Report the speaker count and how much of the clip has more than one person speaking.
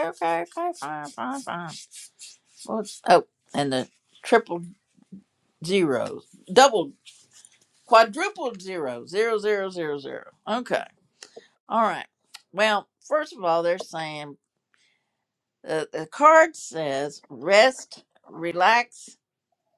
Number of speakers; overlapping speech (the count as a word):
one, no overlap